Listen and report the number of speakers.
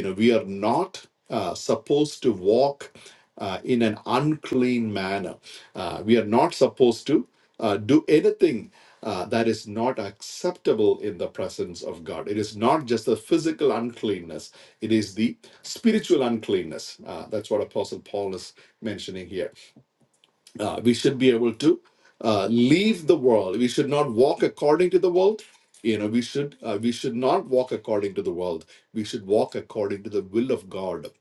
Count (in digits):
1